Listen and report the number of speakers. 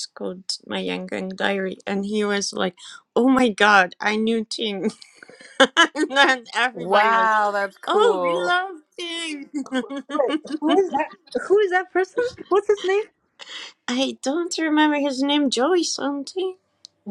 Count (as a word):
three